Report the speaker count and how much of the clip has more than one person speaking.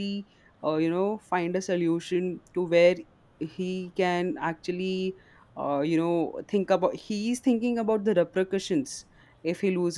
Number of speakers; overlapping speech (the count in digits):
1, no overlap